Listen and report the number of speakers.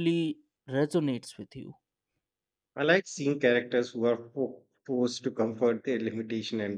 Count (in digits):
2